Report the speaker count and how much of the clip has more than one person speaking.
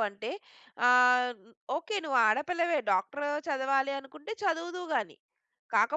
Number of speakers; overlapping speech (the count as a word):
one, no overlap